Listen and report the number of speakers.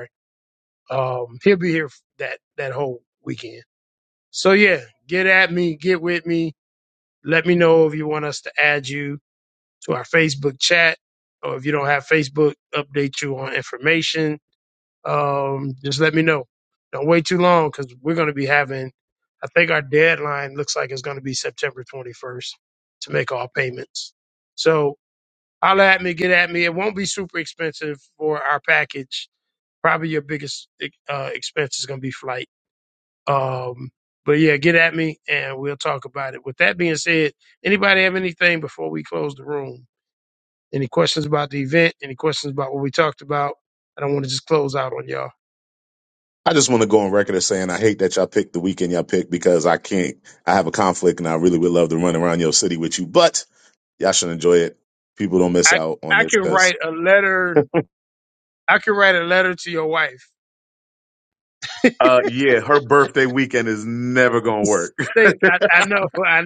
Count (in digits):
2